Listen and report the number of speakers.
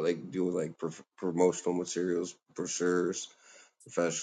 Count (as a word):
one